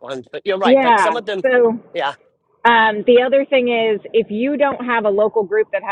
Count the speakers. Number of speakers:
two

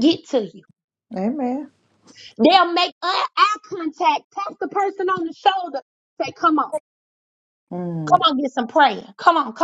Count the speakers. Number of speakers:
two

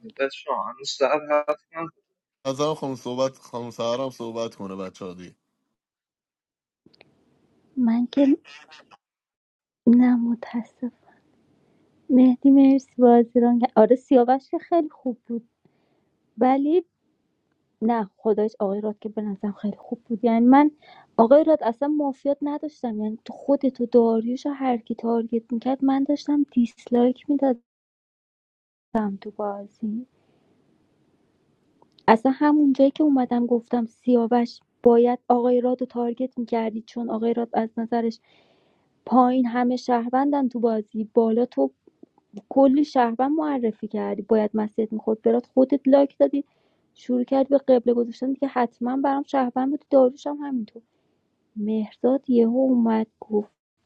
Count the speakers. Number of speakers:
three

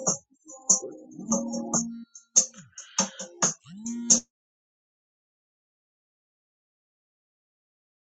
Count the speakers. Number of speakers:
zero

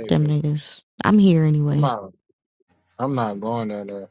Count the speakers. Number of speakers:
two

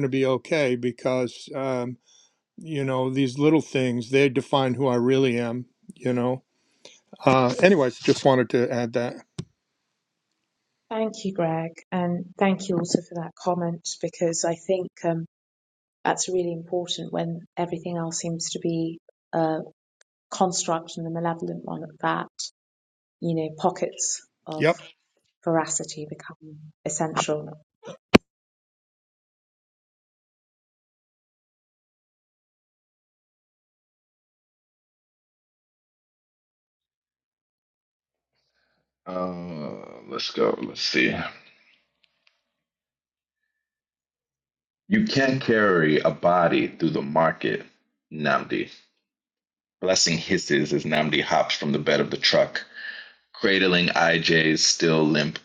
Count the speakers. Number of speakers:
three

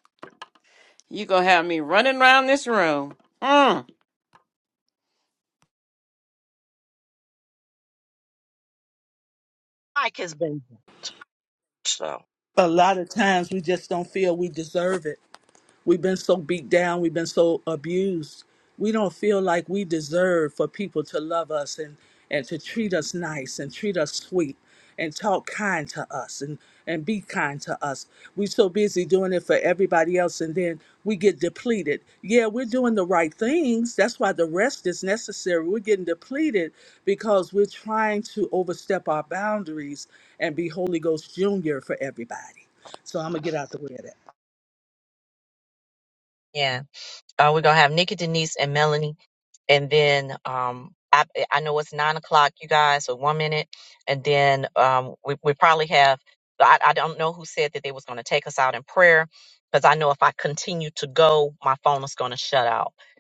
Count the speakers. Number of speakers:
three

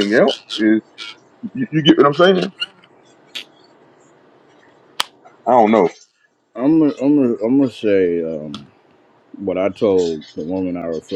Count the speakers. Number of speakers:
two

